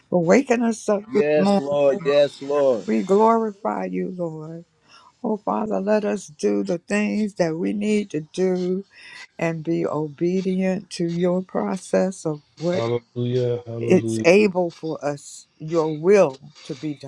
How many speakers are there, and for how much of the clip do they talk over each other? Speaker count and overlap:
three, about 6%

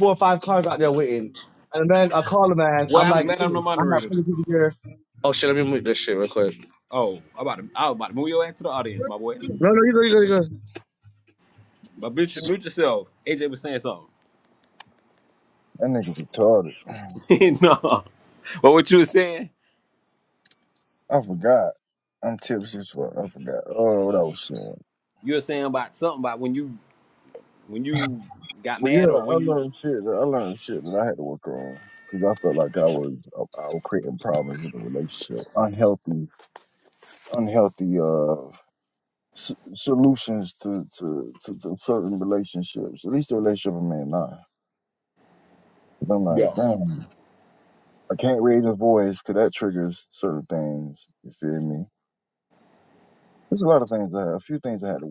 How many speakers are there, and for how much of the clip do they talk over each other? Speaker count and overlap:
three, about 4%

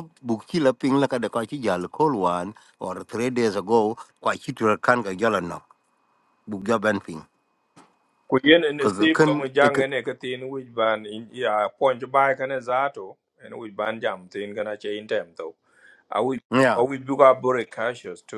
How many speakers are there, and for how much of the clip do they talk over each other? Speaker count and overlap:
two, about 4%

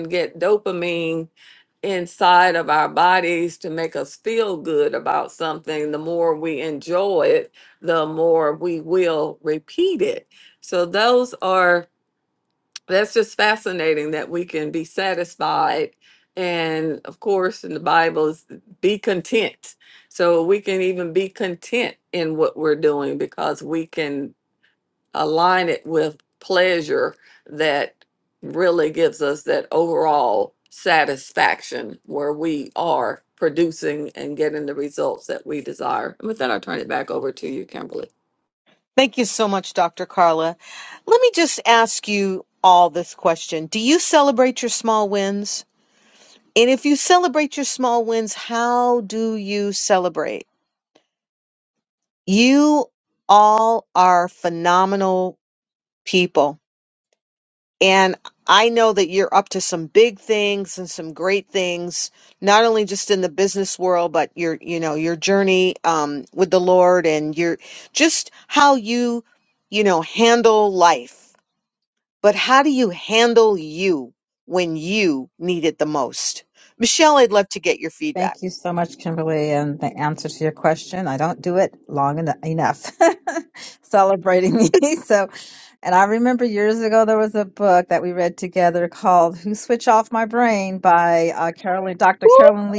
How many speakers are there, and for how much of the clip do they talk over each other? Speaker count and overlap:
three, about 1%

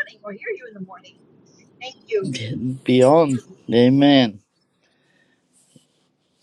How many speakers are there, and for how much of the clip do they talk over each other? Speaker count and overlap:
two, no overlap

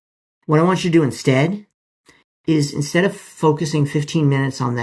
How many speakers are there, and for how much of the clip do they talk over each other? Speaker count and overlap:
one, no overlap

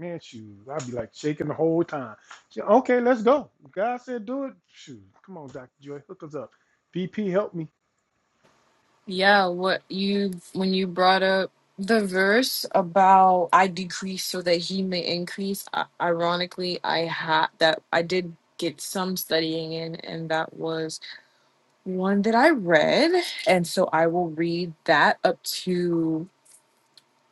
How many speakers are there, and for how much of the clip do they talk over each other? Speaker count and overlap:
two, no overlap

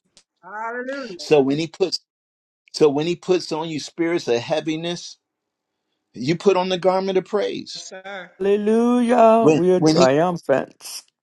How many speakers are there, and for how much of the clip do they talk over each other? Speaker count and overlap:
three, about 7%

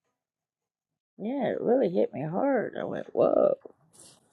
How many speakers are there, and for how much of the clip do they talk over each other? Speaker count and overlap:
one, no overlap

